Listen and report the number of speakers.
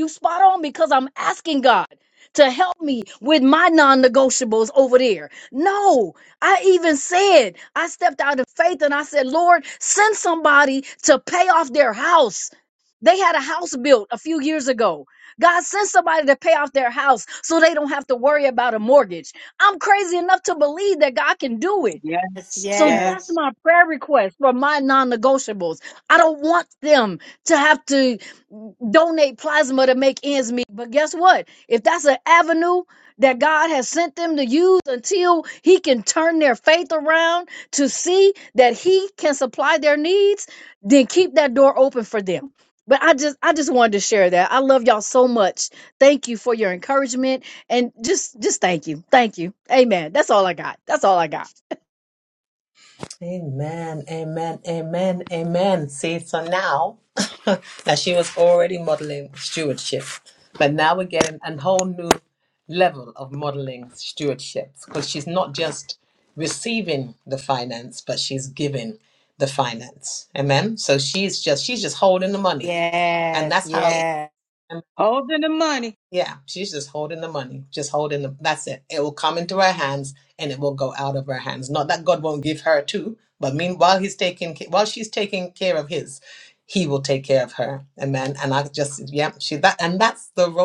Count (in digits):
4